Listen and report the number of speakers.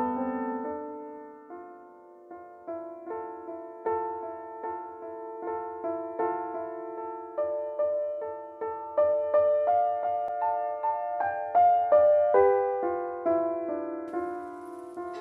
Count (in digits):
0